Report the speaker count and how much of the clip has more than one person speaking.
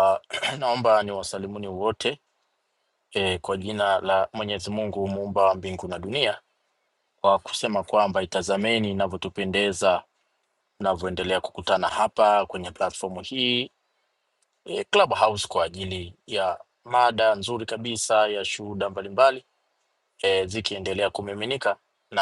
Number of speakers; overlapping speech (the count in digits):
1, no overlap